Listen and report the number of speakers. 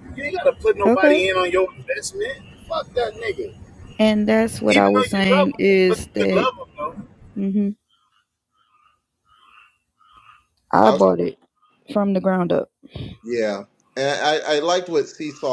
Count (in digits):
3